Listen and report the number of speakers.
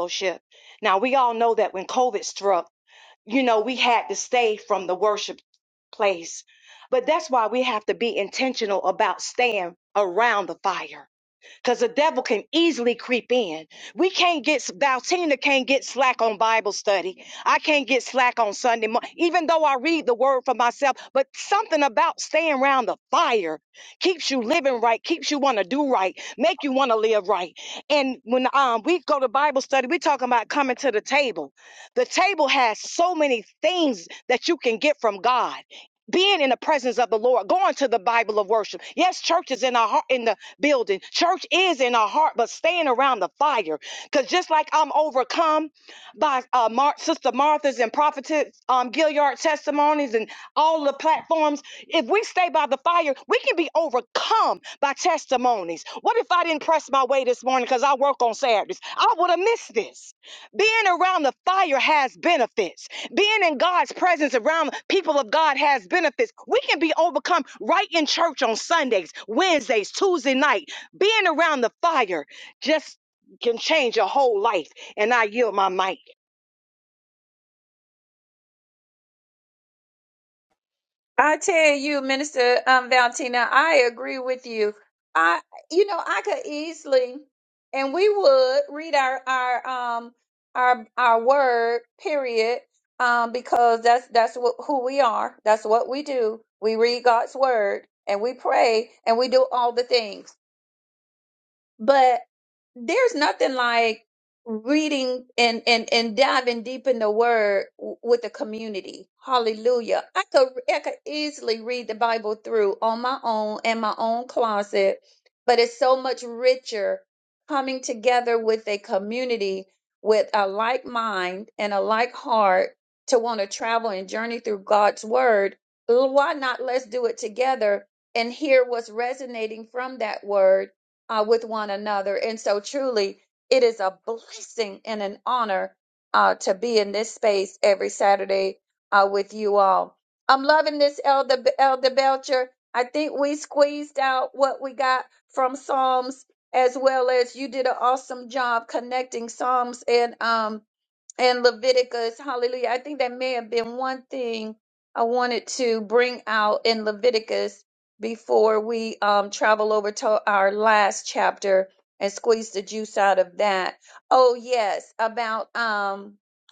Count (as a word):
two